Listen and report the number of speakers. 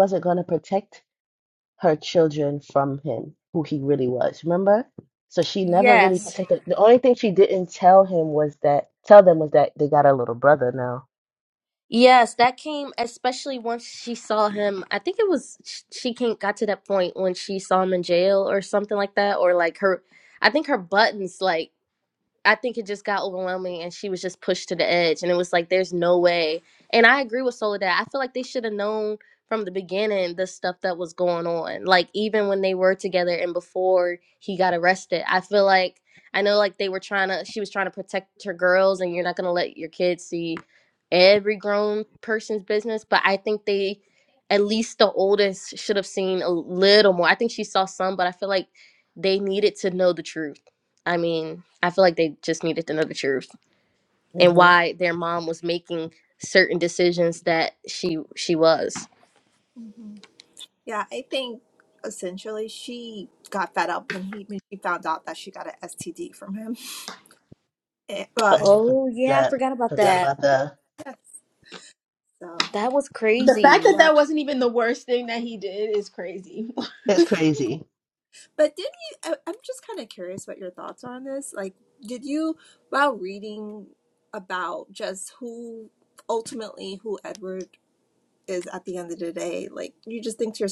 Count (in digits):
4